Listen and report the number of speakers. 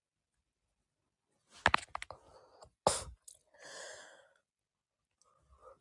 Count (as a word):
zero